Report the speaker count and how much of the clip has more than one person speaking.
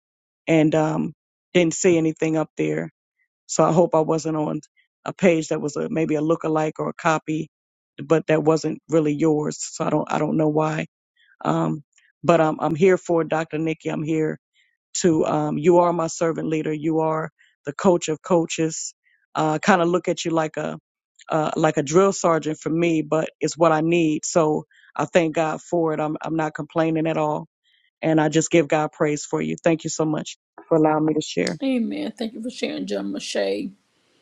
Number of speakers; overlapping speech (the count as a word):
two, no overlap